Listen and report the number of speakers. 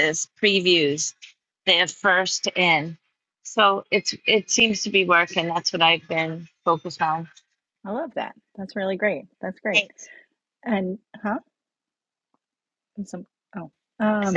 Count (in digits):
2